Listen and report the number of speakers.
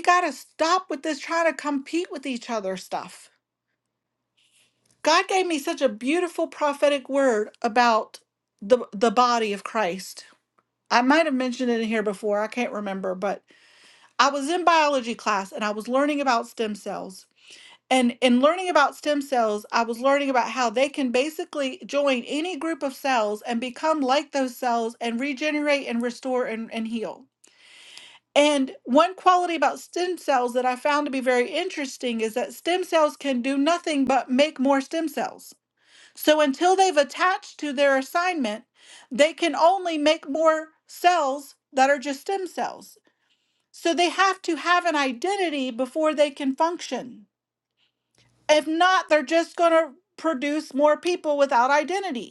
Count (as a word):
one